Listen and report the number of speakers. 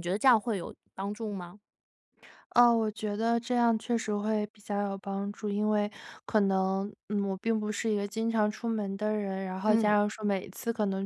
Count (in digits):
2